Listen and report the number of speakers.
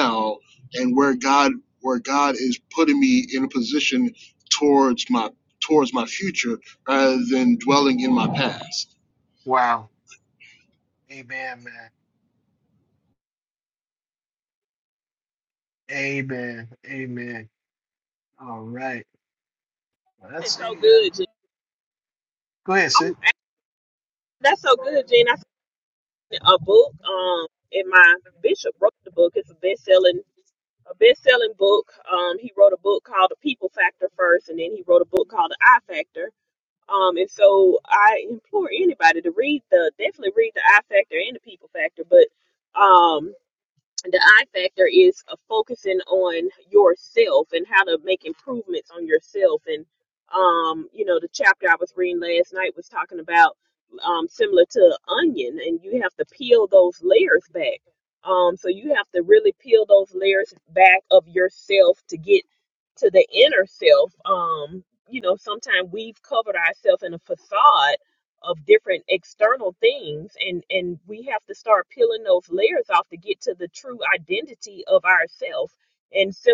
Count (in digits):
3